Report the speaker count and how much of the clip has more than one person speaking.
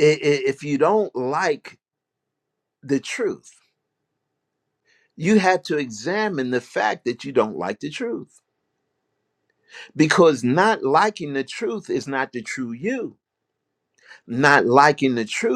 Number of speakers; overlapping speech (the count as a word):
one, no overlap